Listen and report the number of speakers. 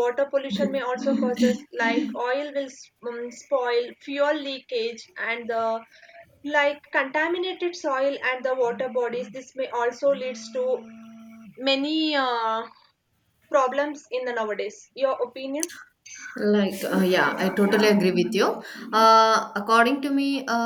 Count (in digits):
2